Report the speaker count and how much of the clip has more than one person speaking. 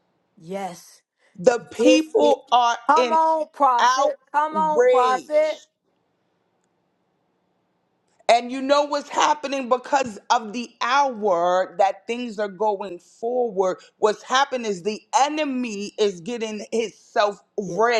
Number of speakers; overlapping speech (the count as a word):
two, about 11%